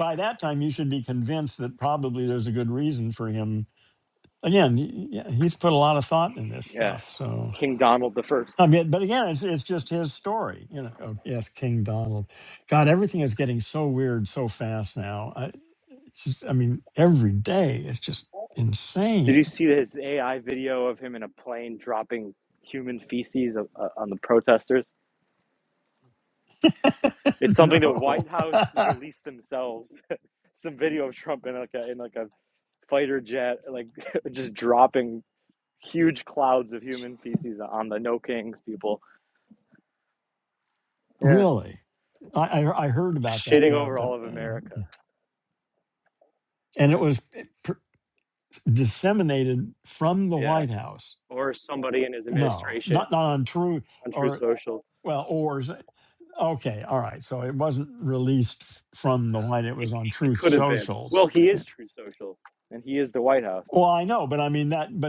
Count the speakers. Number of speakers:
2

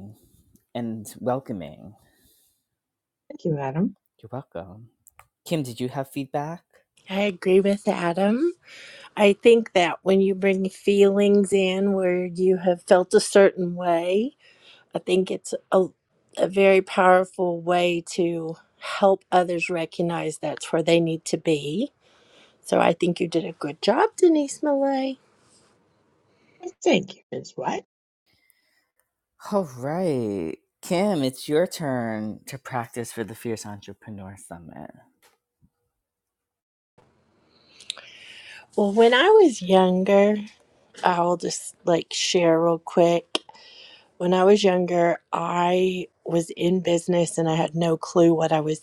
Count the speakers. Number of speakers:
3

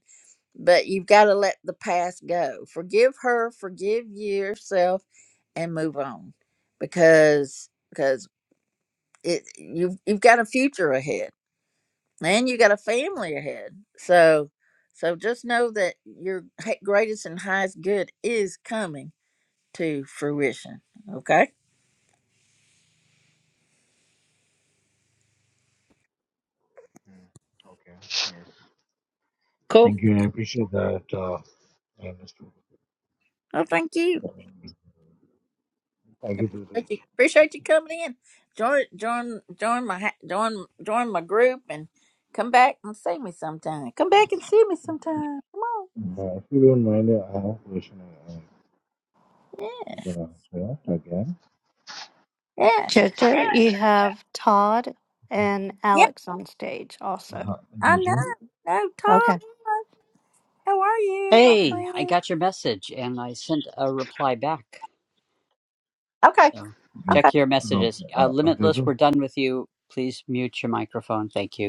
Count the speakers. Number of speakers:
4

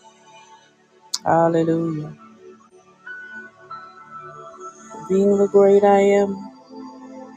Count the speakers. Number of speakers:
1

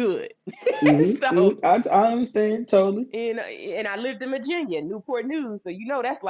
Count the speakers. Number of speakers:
2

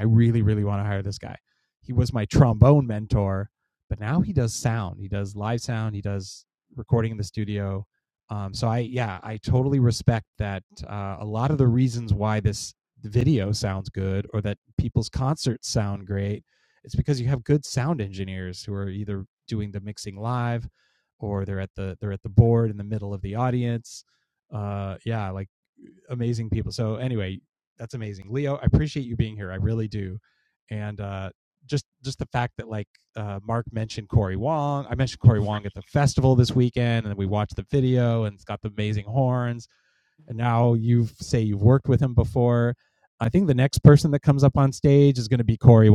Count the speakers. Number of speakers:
1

